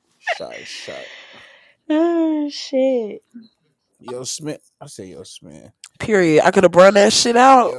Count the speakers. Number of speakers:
3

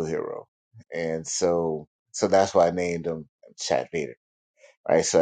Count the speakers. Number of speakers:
1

